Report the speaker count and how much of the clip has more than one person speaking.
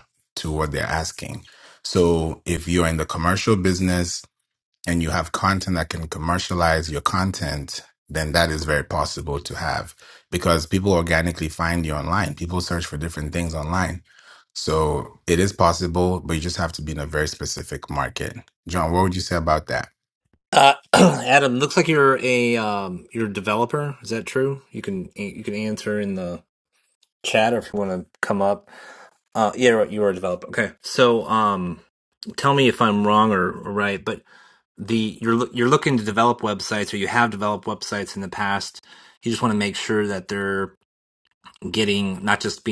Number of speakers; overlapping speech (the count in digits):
2, no overlap